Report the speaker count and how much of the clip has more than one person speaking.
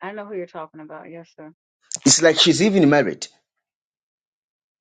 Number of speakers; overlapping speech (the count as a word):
two, no overlap